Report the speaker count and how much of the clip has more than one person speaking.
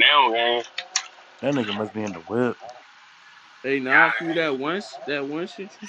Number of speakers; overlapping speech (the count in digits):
3, about 9%